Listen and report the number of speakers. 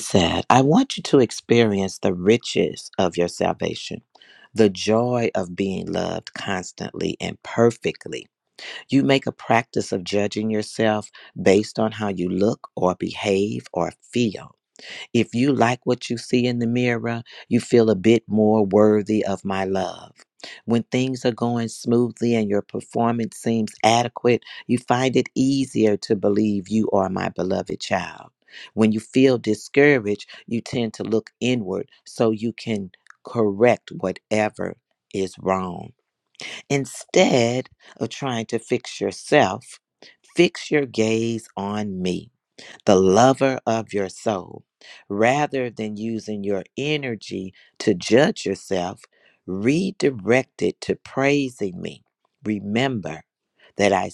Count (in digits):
1